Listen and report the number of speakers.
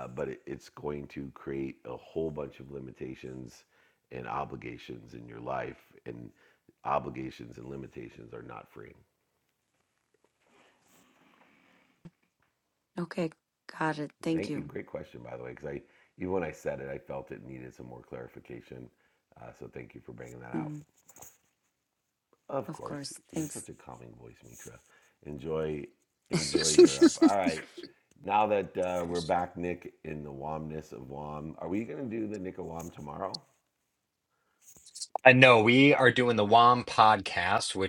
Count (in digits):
3